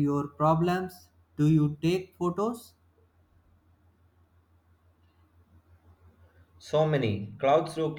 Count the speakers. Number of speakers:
2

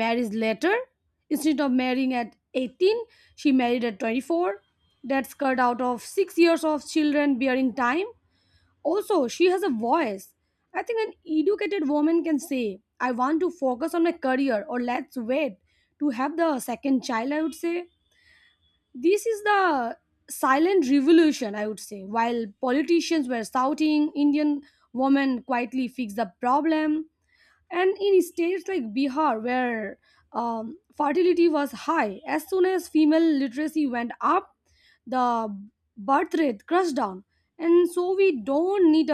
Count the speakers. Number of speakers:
1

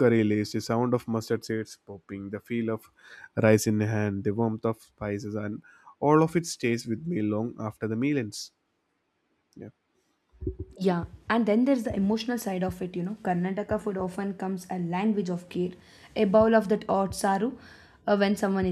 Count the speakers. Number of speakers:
2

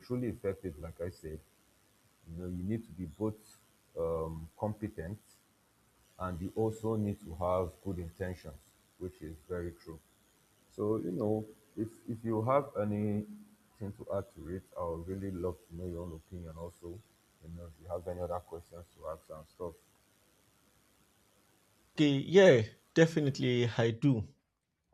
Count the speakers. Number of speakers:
2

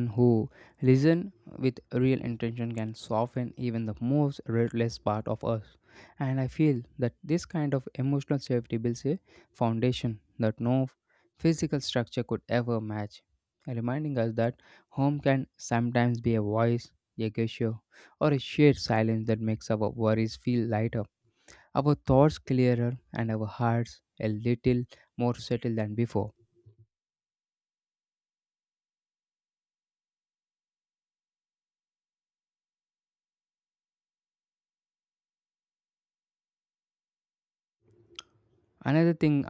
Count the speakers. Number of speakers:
1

